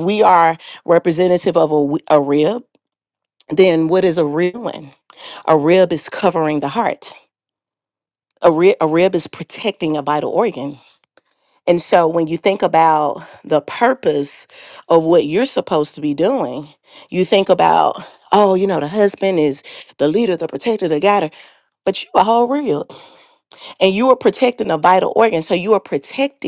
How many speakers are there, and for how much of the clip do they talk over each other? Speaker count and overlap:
one, no overlap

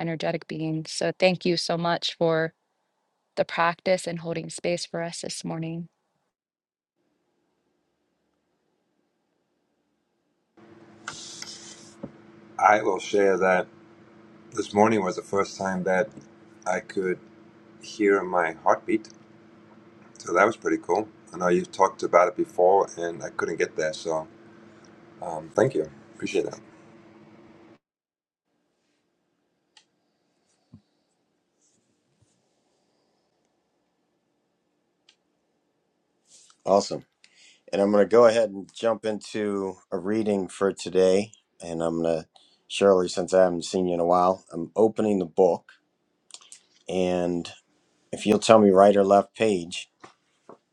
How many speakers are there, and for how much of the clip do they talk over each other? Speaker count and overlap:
three, no overlap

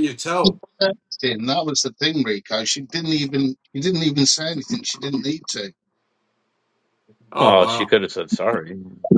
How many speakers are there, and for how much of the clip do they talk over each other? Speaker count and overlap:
three, about 5%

